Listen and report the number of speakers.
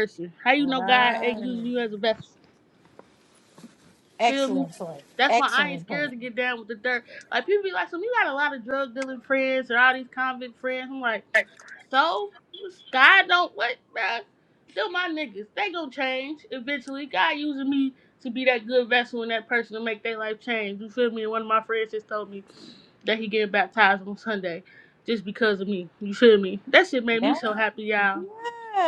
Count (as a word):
two